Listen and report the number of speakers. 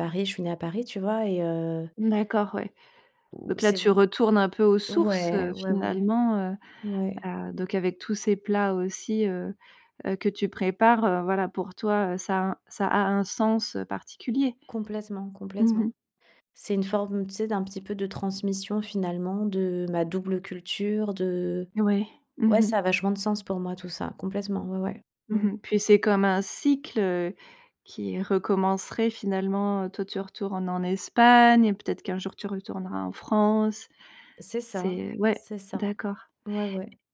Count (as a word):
two